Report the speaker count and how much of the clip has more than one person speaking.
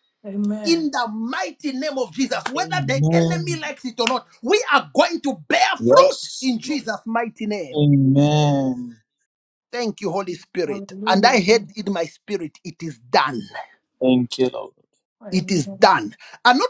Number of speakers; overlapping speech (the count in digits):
3, about 19%